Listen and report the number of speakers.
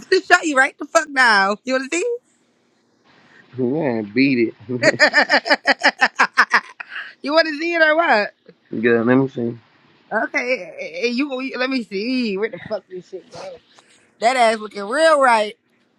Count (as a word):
two